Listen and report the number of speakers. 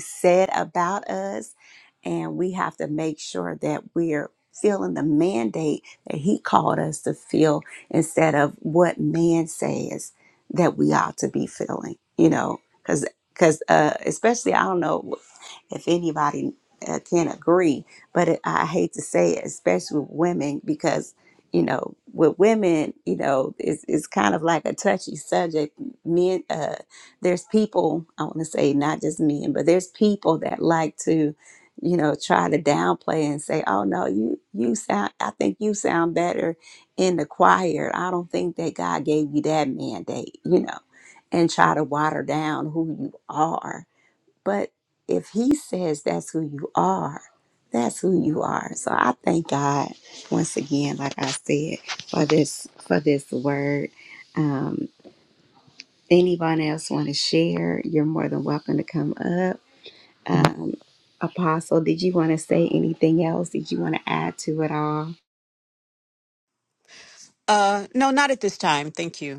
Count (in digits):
2